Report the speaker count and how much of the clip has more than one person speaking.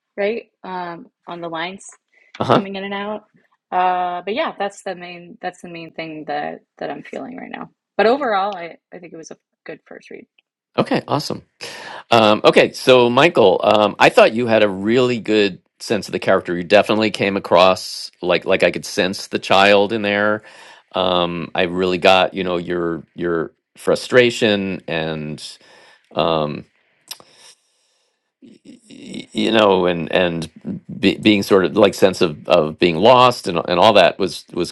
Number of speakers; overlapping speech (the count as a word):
two, under 1%